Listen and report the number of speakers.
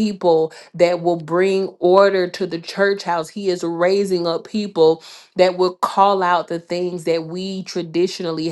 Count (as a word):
one